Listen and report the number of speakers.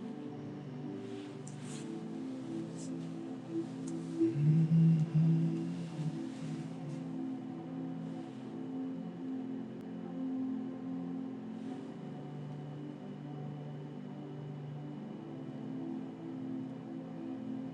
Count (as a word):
zero